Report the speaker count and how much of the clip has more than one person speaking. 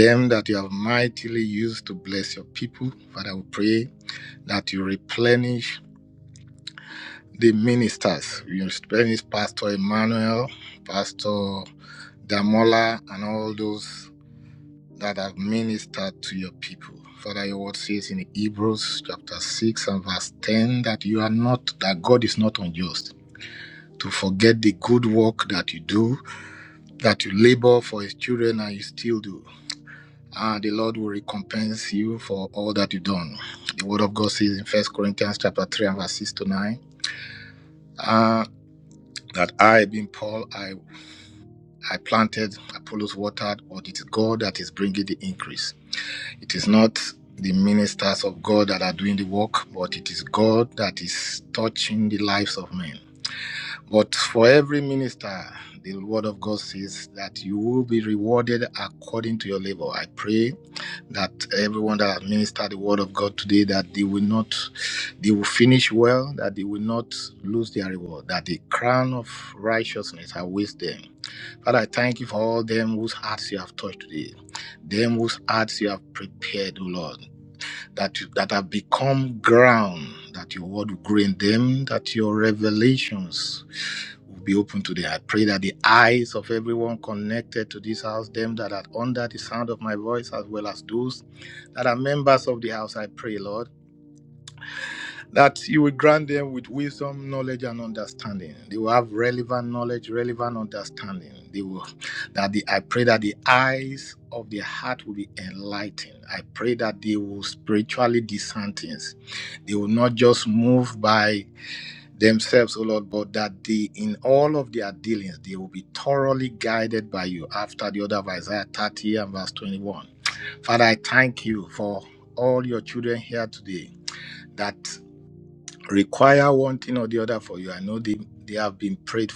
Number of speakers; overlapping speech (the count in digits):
1, no overlap